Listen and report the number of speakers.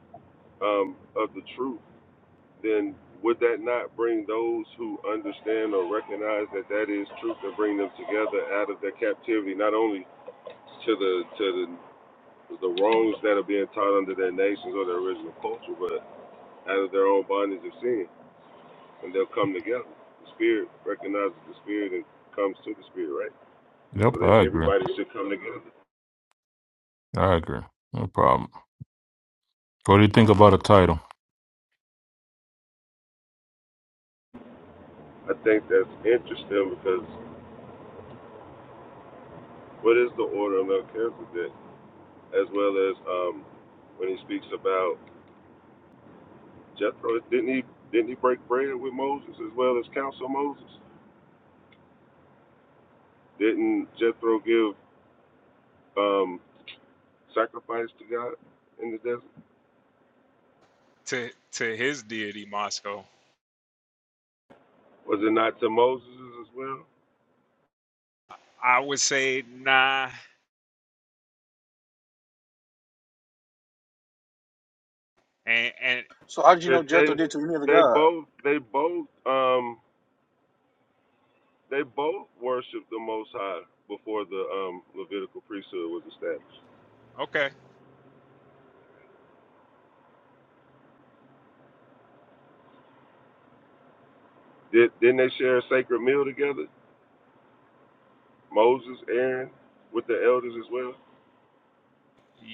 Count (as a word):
four